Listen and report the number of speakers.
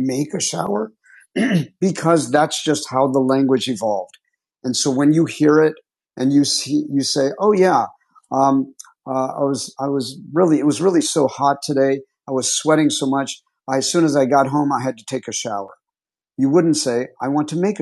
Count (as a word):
one